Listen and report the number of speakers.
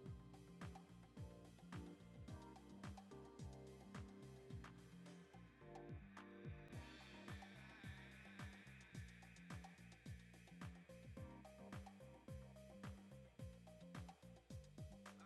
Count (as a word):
zero